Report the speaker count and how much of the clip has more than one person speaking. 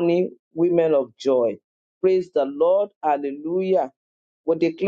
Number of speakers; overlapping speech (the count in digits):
1, no overlap